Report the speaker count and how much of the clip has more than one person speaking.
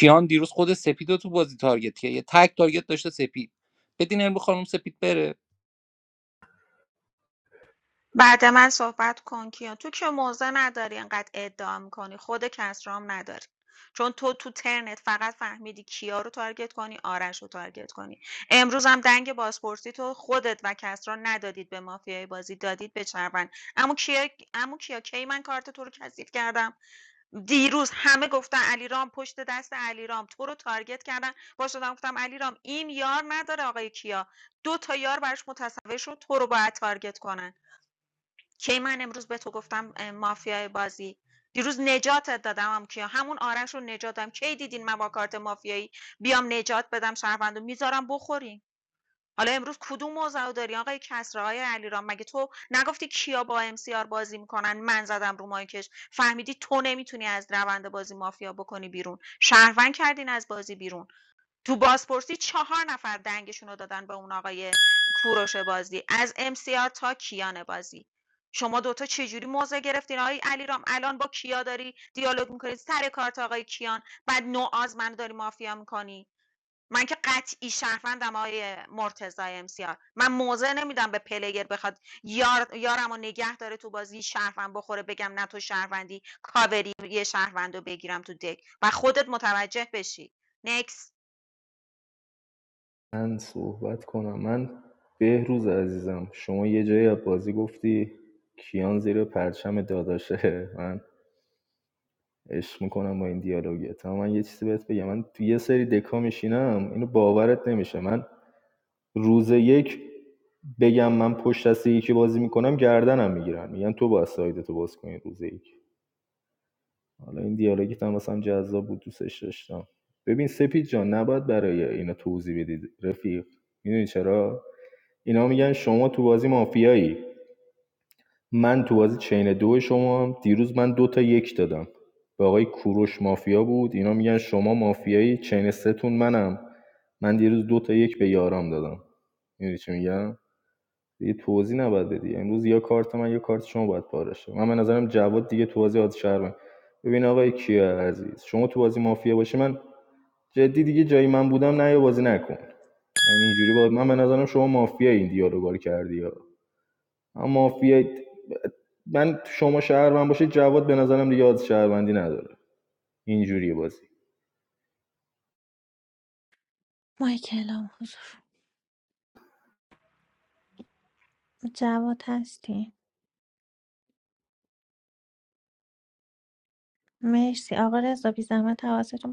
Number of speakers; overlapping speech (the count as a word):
four, no overlap